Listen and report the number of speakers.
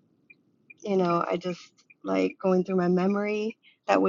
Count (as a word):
one